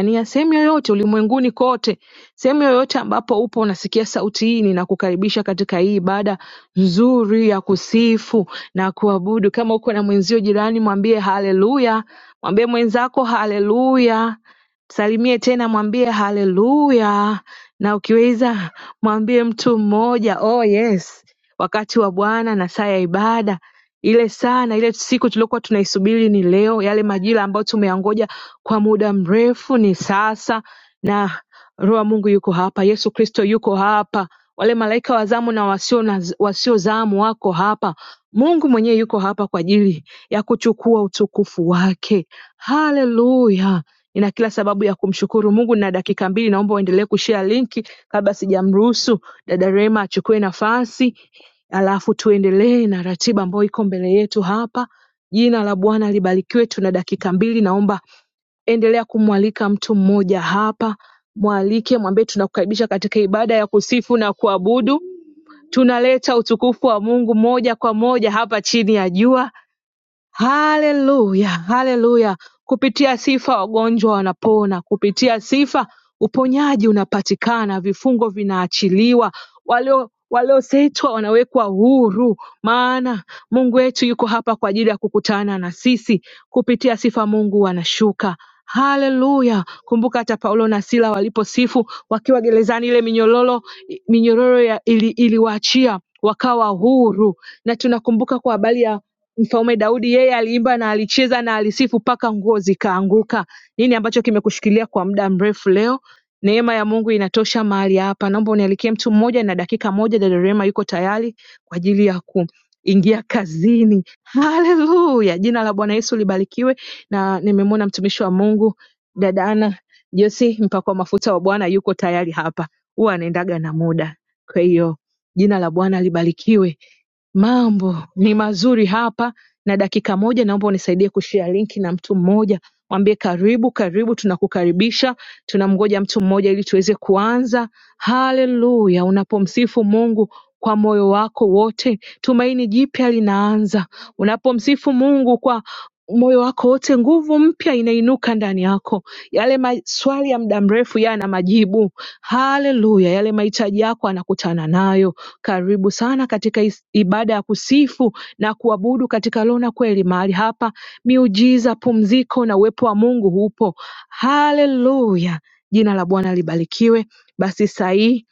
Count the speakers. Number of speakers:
one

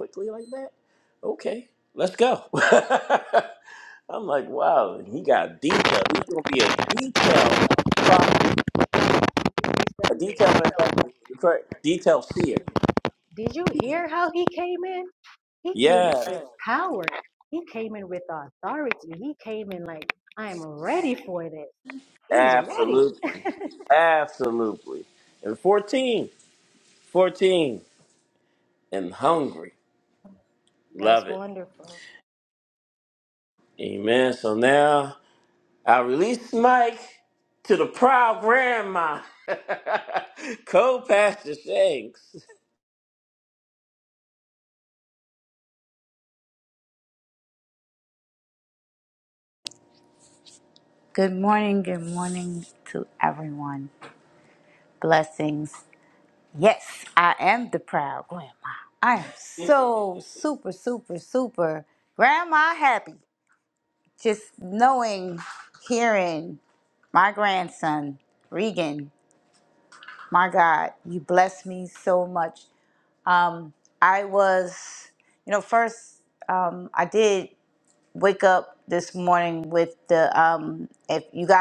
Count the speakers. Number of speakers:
three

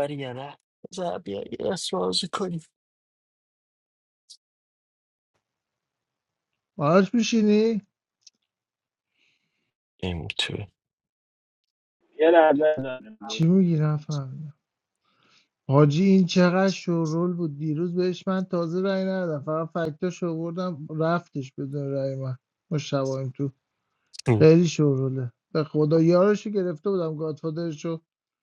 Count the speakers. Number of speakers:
three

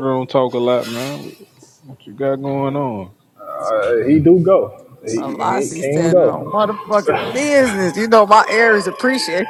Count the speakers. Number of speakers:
three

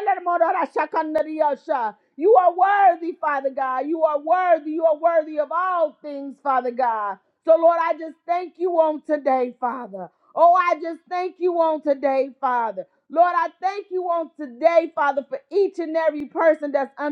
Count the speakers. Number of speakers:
one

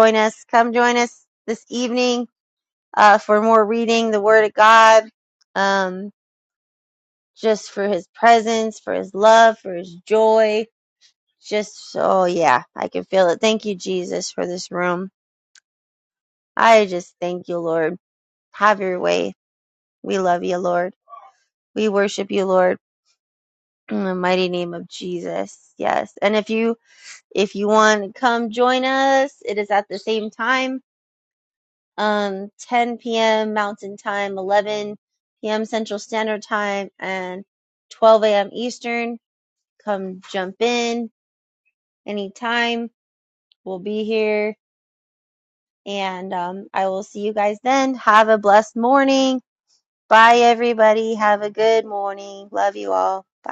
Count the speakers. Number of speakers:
one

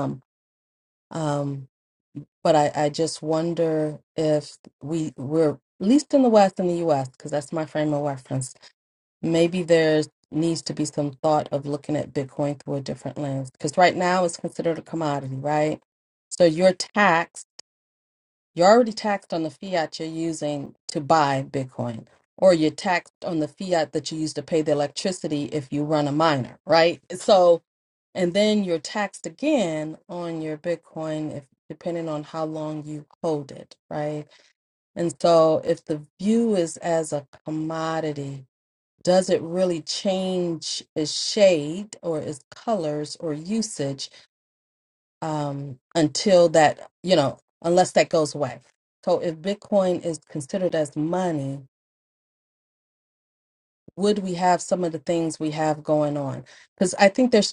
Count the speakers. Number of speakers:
one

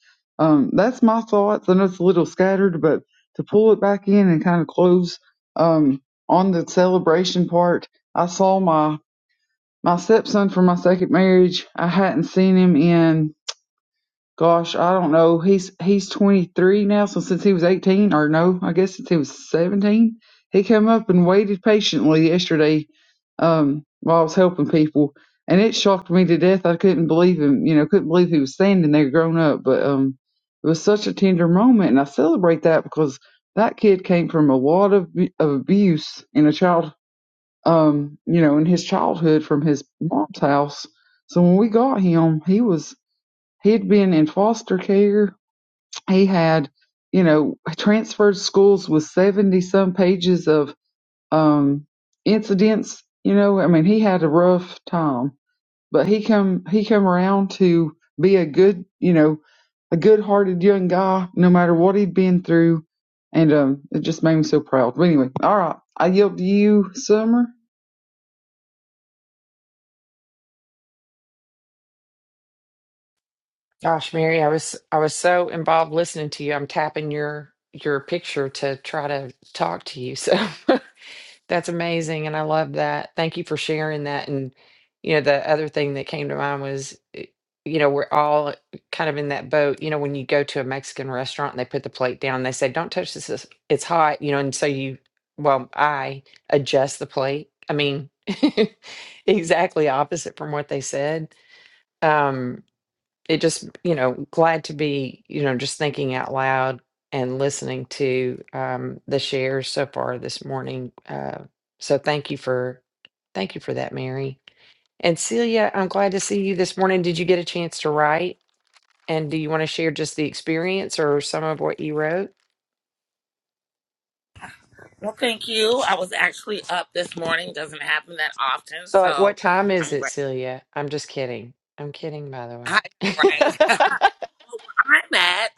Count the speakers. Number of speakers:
three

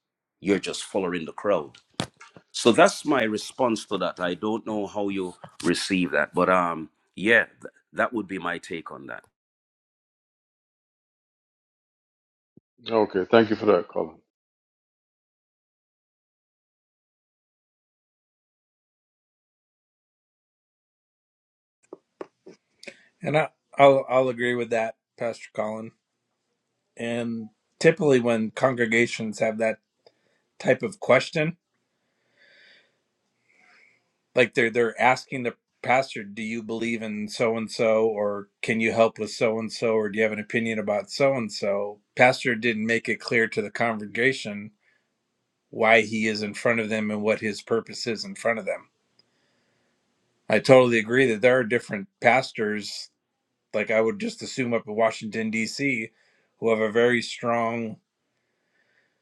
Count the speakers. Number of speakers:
three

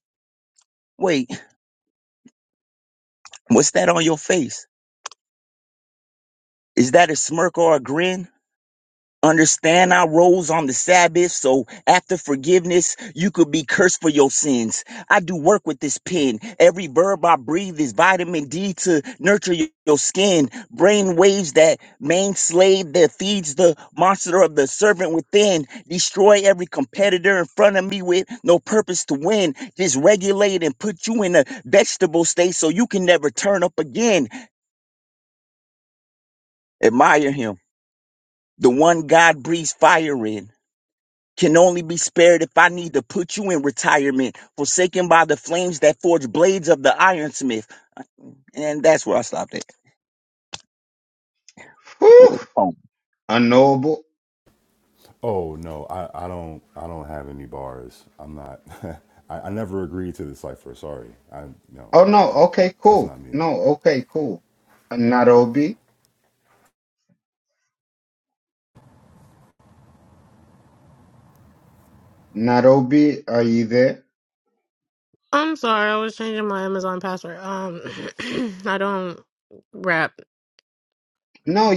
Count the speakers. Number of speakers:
four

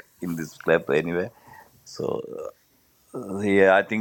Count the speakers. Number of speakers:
one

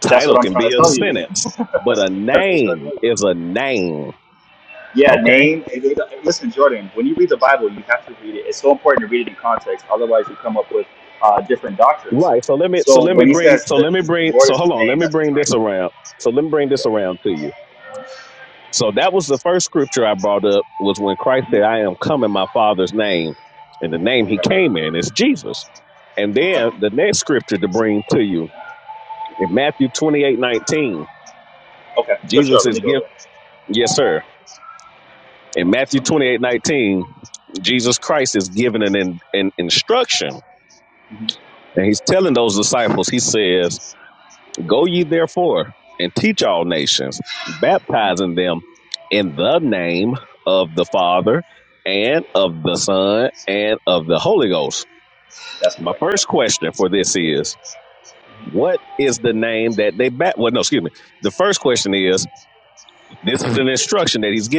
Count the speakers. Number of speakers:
two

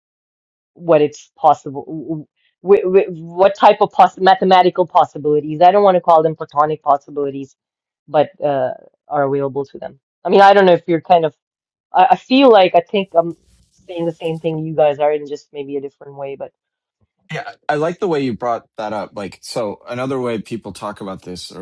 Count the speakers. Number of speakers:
two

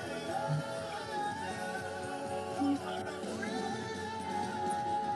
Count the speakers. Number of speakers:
zero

